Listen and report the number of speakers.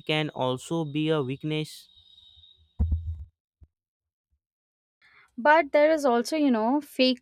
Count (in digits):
2